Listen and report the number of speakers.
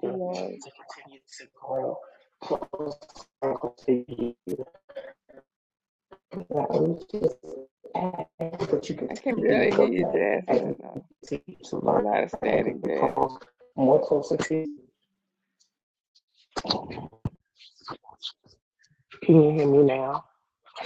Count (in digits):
2